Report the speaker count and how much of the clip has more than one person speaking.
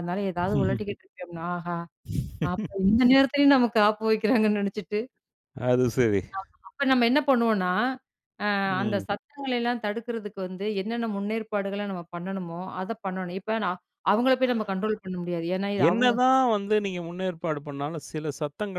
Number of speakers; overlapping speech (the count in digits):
2, about 4%